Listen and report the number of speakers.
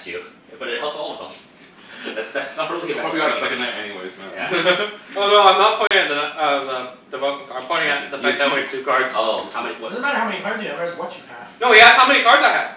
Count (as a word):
four